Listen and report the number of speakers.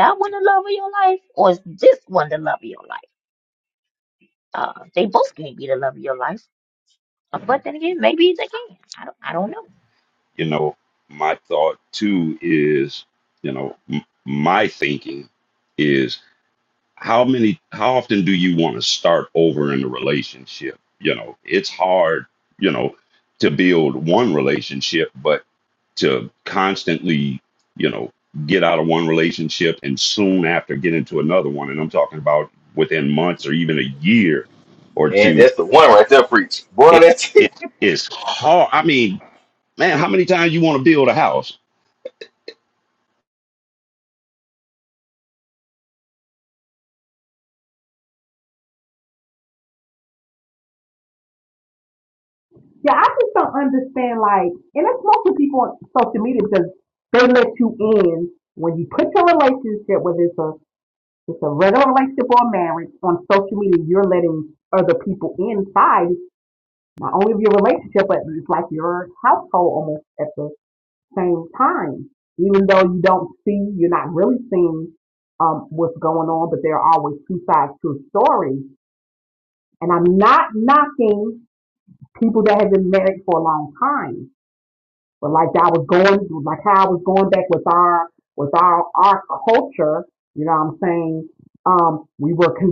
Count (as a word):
four